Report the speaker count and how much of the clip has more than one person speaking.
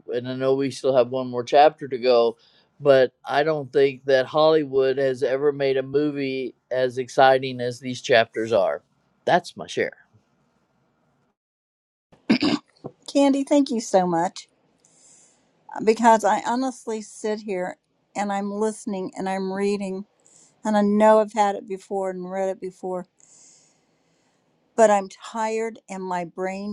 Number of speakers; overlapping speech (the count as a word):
two, no overlap